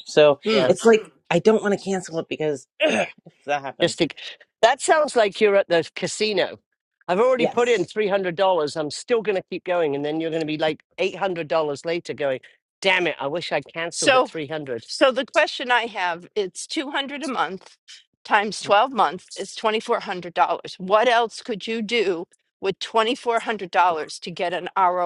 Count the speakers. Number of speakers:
3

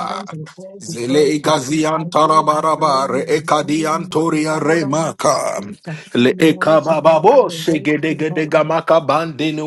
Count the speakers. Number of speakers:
2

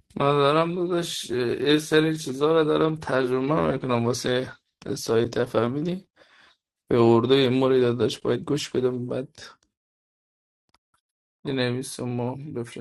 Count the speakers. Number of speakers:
1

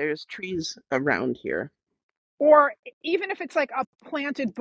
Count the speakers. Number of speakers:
2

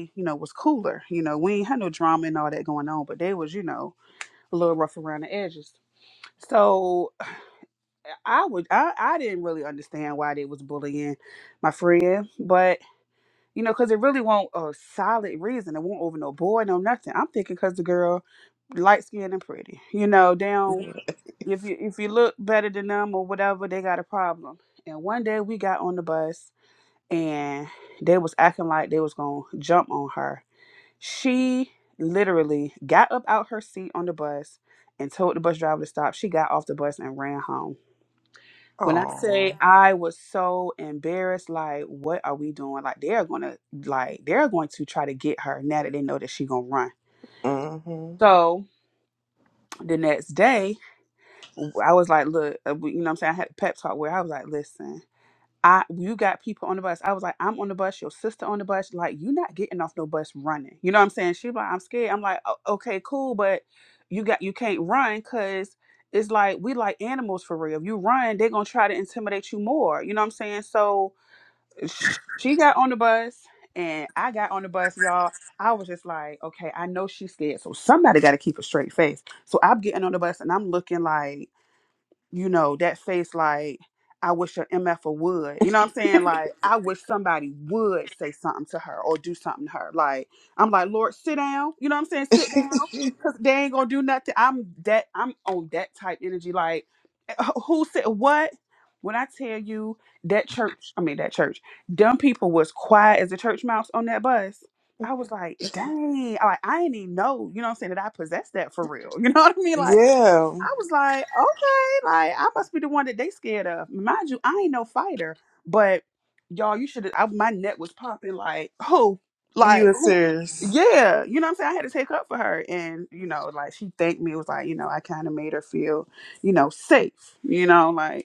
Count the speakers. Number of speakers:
2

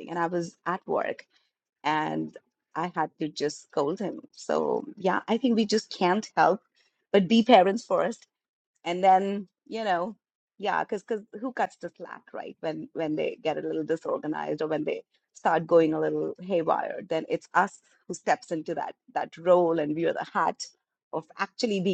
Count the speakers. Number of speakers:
1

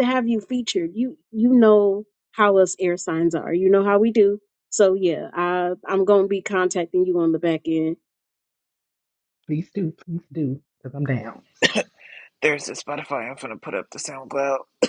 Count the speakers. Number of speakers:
3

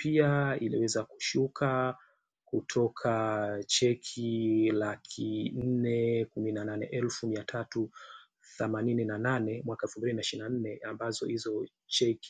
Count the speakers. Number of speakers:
1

